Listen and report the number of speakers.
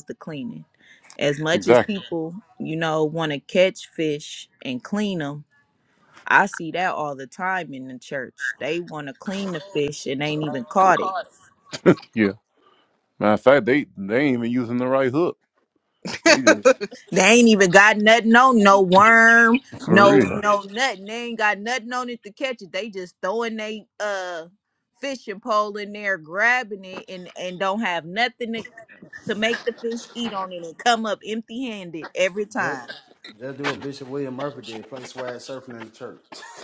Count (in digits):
3